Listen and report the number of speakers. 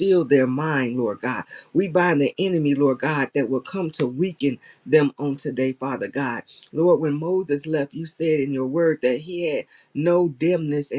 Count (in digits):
1